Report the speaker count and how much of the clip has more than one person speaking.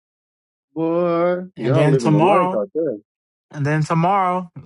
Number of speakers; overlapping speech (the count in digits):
2, about 21%